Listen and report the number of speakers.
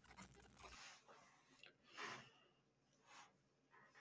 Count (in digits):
0